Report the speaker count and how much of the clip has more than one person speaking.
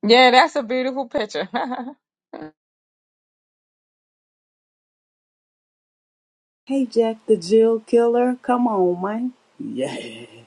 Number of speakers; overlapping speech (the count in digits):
2, no overlap